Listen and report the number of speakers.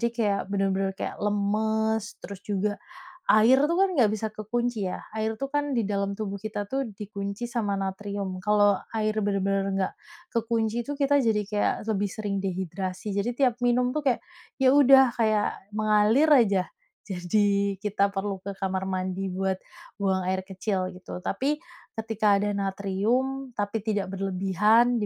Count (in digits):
1